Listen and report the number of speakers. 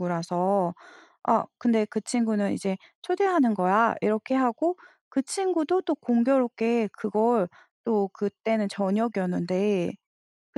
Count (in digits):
1